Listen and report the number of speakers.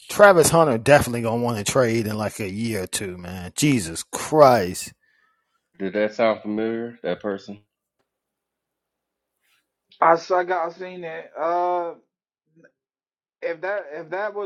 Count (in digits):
3